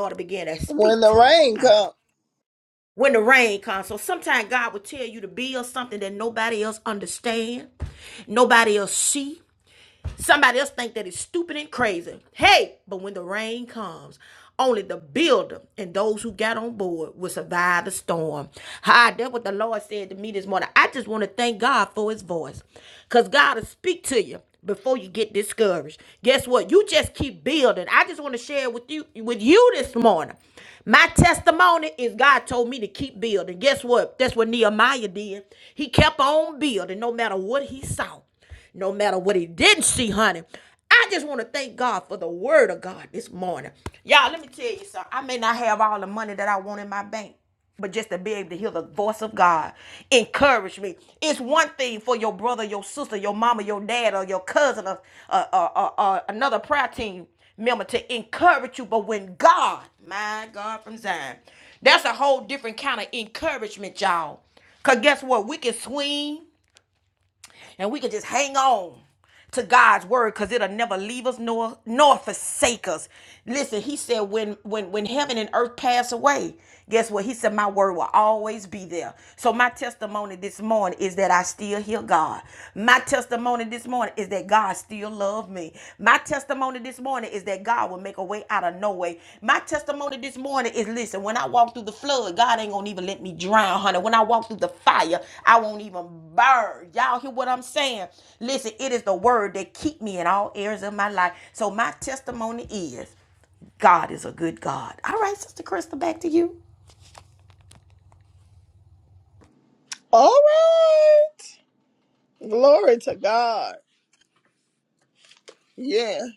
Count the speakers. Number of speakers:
2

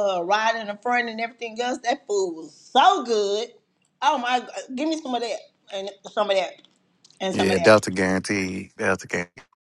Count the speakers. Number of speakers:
2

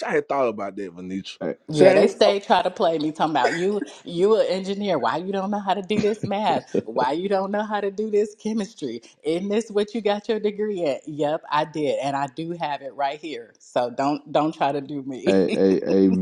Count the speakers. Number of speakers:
3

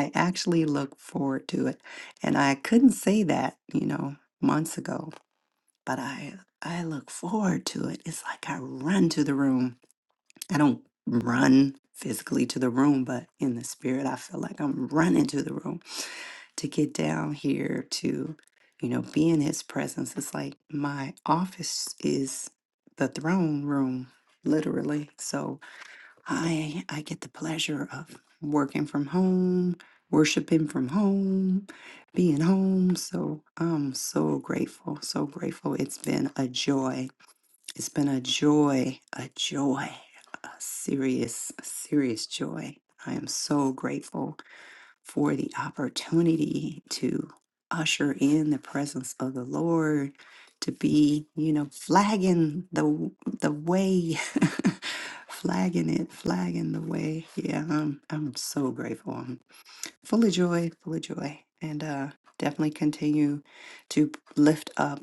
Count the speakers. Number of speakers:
1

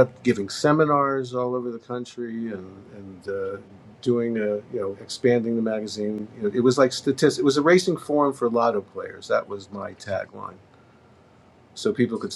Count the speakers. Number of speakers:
1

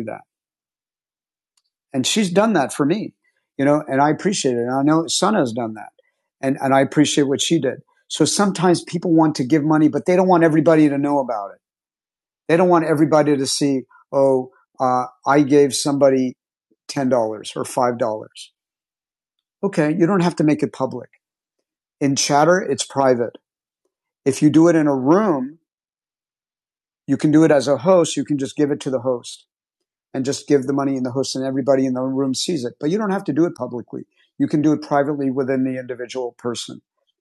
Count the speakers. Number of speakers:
1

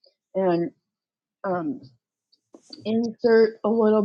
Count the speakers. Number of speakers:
1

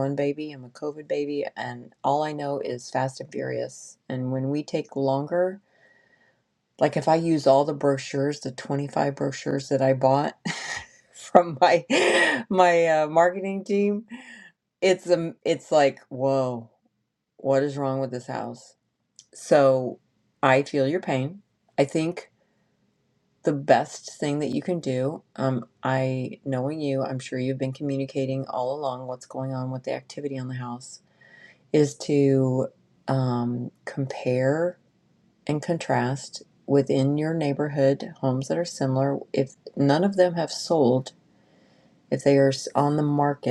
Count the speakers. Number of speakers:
1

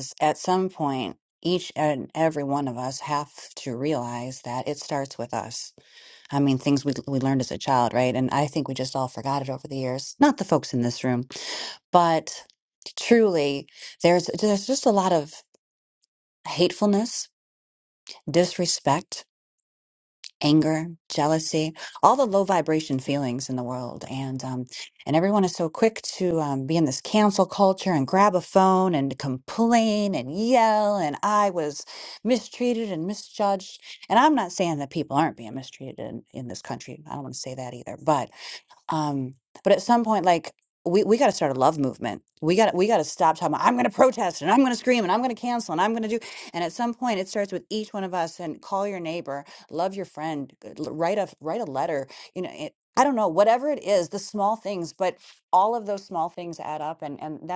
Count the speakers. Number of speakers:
1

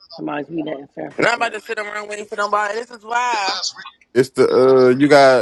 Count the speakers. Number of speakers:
3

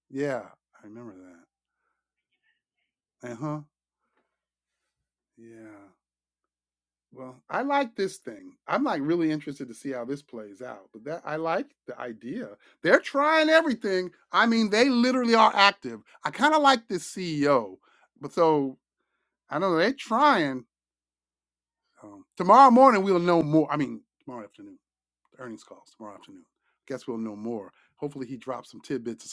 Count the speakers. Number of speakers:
1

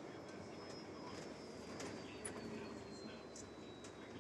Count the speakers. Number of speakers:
0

